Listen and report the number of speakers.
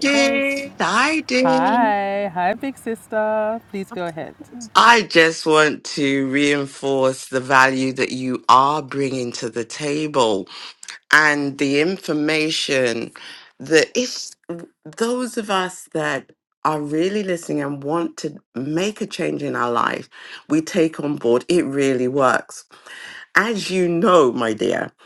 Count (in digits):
2